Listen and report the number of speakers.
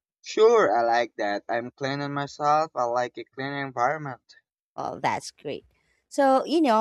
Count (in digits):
2